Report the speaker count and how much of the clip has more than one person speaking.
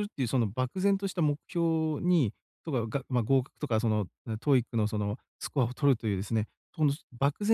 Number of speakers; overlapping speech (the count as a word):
one, no overlap